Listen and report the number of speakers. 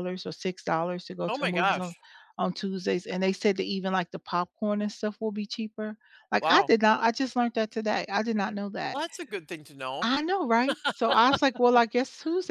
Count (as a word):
two